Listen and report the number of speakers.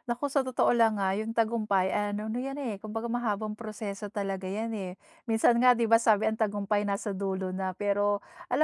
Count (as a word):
one